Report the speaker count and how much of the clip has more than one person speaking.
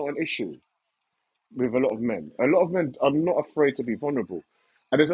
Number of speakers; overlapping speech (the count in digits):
1, no overlap